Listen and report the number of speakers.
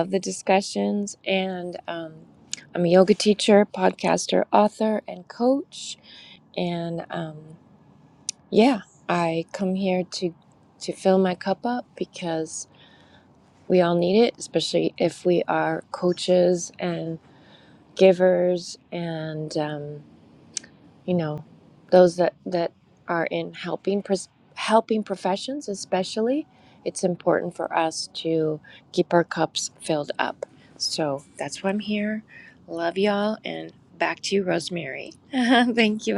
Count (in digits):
1